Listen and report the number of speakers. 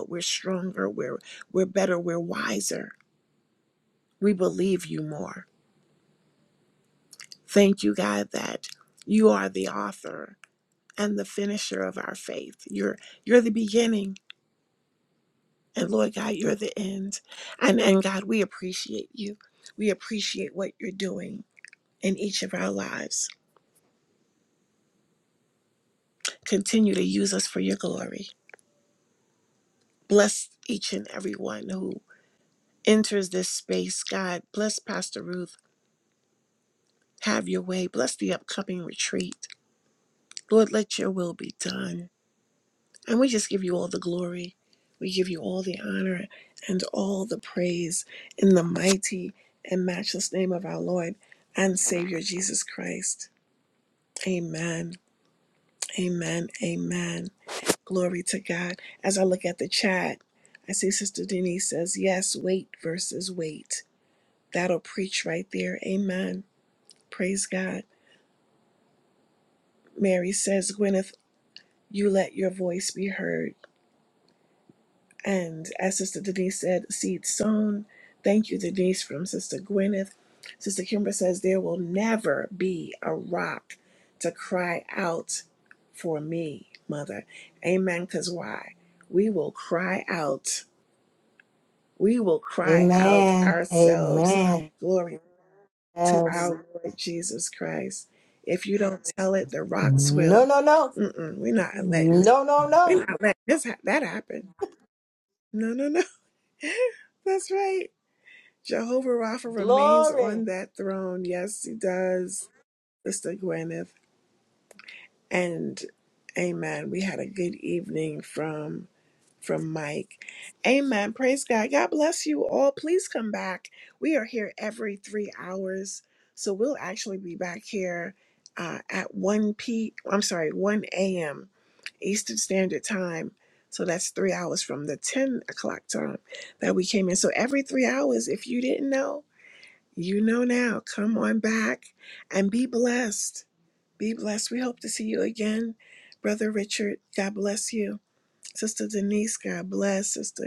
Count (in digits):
2